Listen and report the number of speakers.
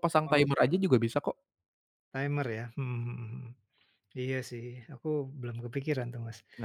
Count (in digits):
2